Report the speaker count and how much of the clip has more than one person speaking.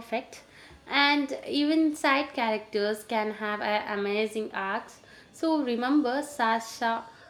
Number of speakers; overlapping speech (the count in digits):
1, no overlap